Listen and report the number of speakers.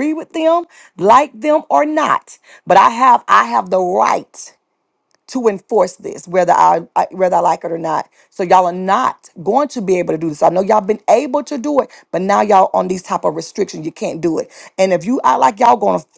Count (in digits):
1